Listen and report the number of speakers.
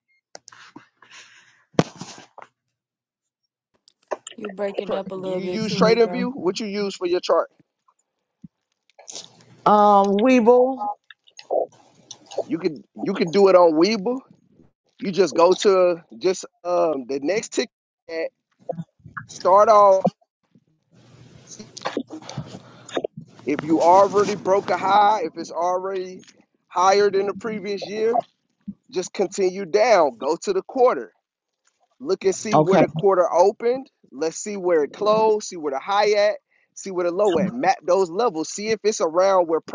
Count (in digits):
3